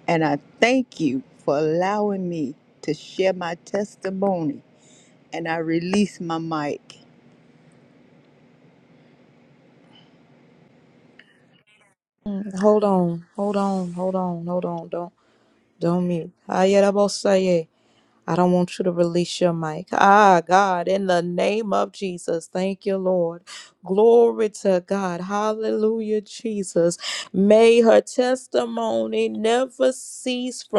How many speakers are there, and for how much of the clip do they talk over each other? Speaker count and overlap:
2, no overlap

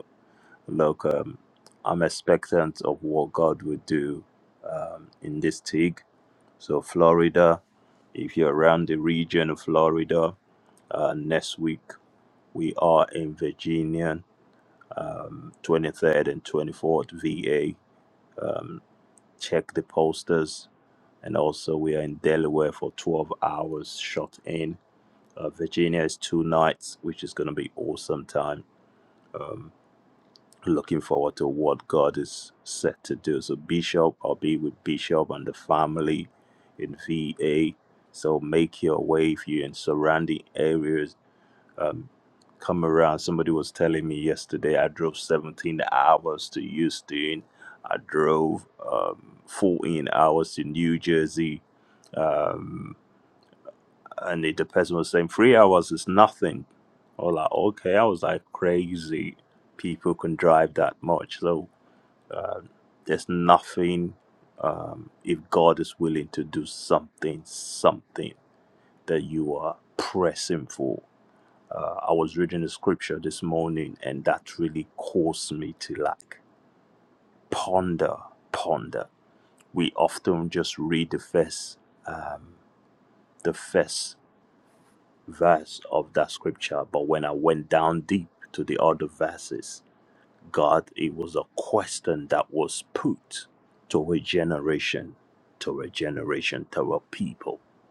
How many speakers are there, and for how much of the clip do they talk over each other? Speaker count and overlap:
1, no overlap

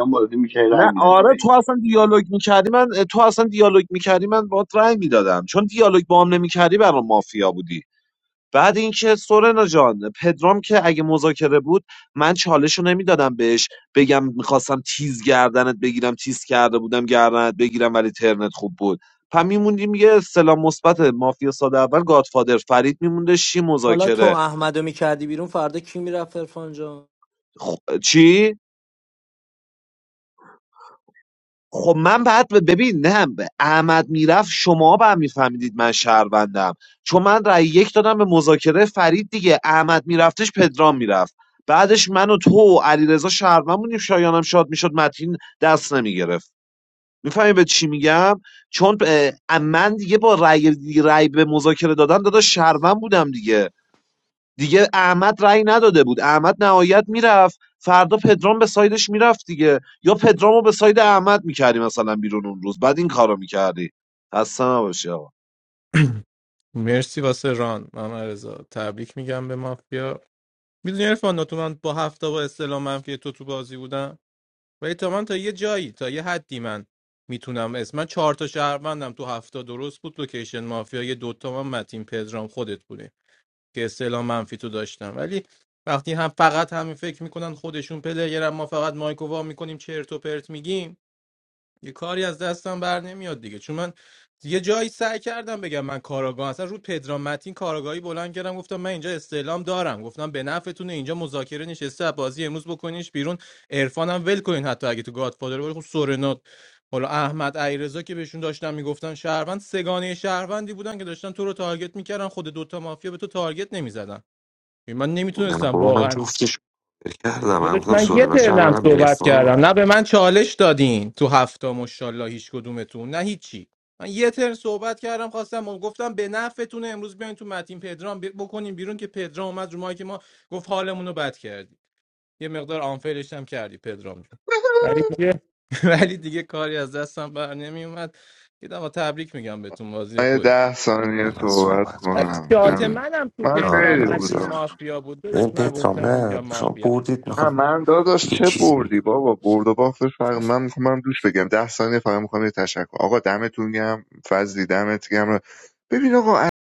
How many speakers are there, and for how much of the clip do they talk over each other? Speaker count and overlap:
6, about 6%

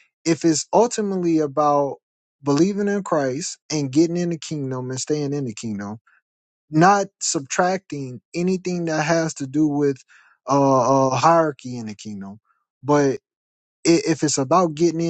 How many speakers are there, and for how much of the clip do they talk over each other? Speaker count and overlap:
1, no overlap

